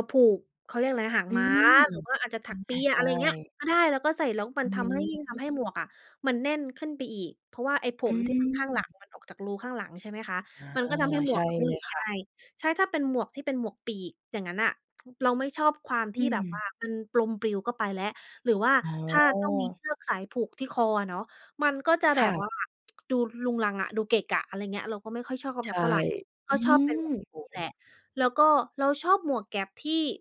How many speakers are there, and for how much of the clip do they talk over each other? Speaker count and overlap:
2, about 18%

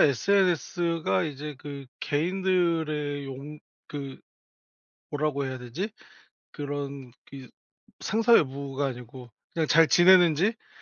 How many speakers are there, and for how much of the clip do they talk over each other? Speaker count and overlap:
1, no overlap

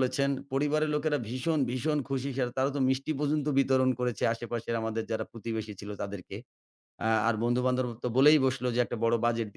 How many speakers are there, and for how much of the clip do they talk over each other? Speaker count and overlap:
1, no overlap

